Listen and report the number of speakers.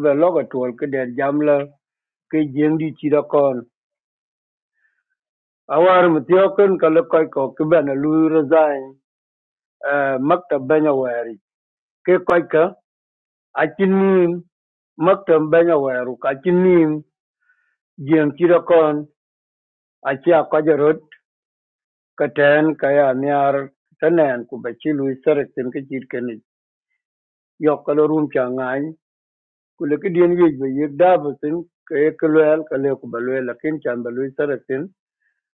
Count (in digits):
1